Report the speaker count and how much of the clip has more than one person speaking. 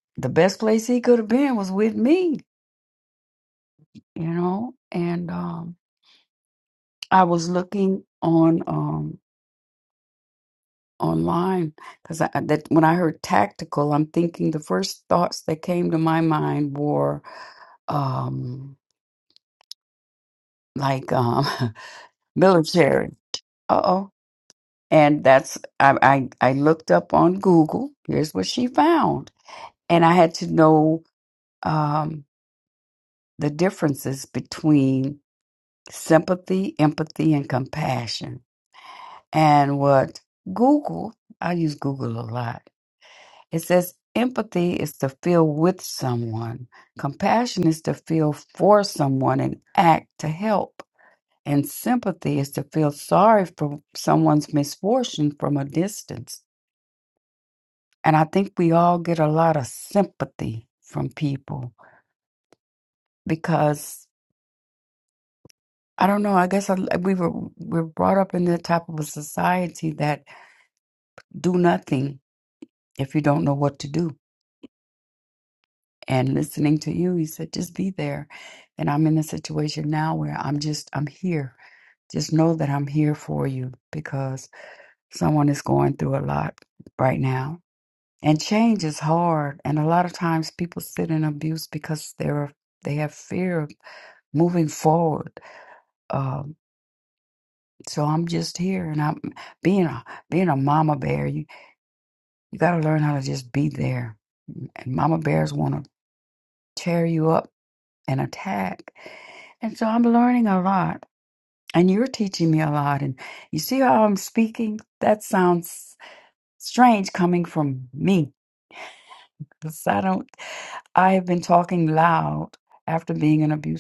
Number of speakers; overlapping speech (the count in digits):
1, no overlap